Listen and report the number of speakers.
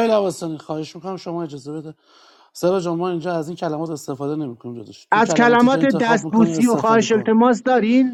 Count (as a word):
two